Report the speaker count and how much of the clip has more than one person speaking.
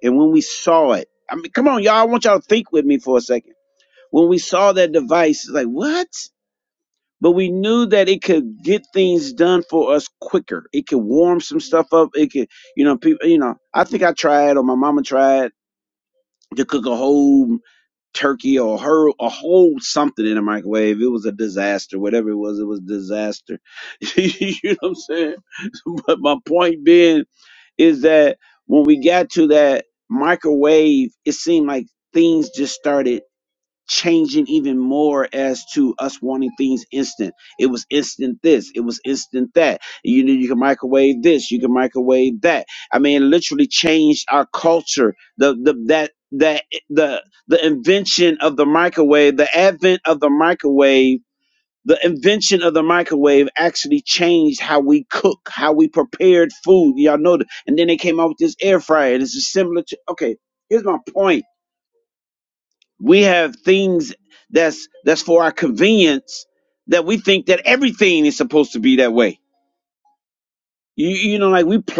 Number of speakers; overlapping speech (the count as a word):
one, no overlap